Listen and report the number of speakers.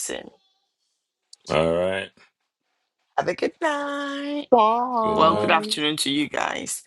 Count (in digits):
3